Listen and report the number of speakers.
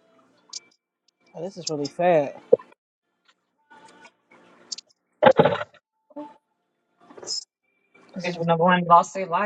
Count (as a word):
two